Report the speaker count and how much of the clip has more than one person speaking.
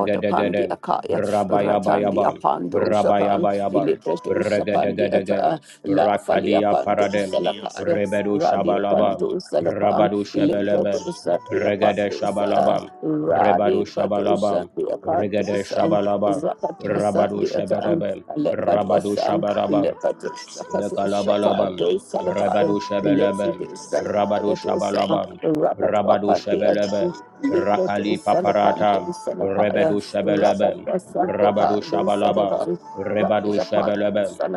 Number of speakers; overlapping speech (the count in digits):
2, about 73%